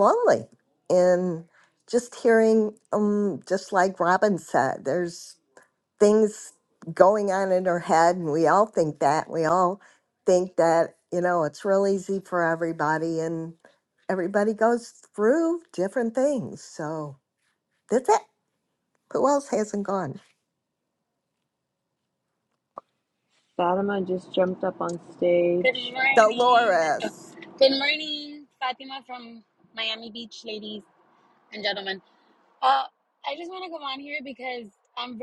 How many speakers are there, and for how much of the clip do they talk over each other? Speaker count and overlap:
three, about 3%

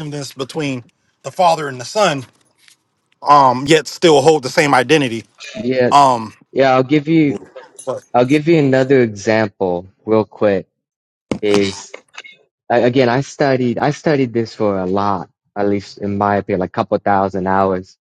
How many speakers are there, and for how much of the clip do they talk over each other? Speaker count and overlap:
two, under 1%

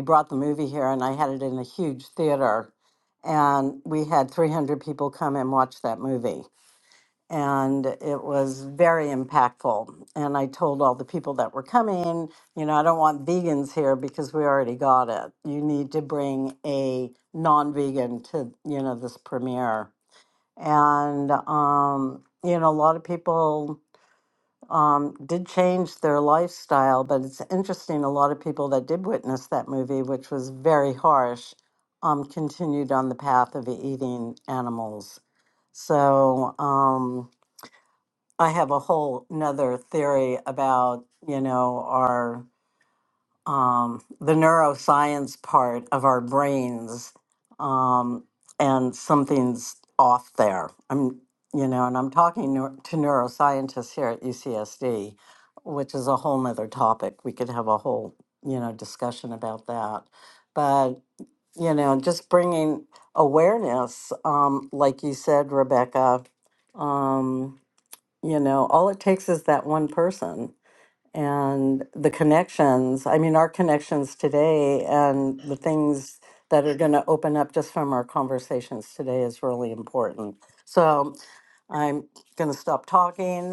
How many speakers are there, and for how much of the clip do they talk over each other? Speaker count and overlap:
one, no overlap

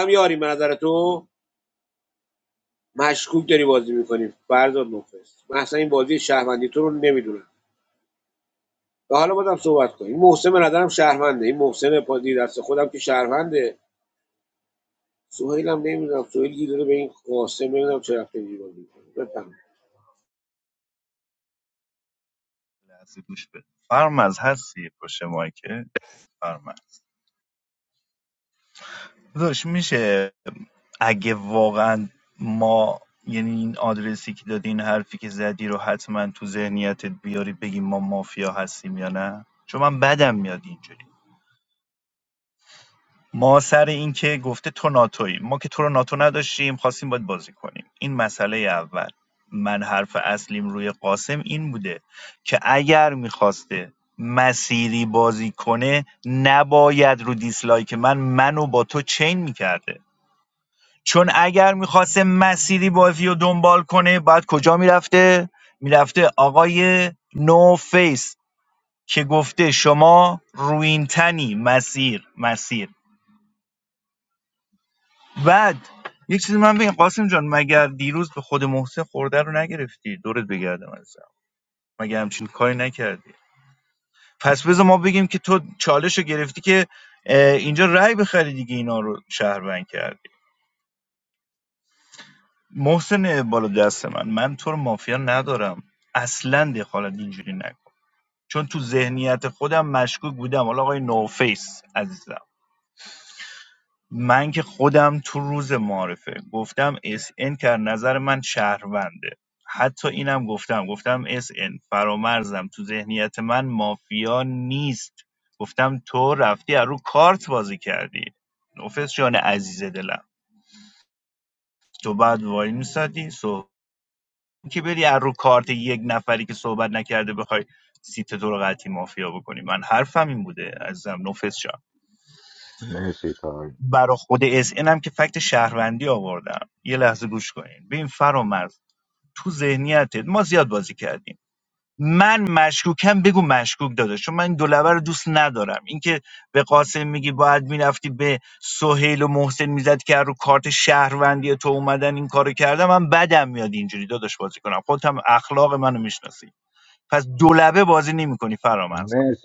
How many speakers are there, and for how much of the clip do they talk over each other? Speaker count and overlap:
three, under 1%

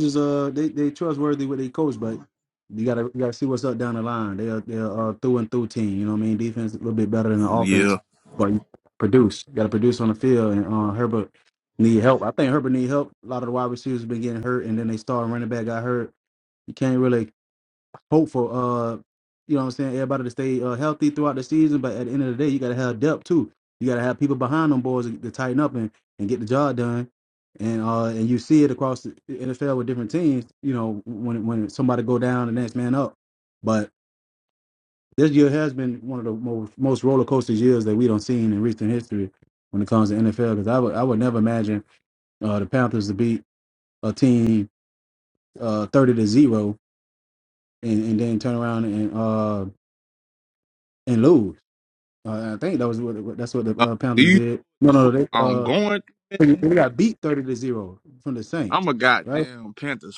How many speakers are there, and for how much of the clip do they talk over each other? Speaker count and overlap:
two, about 4%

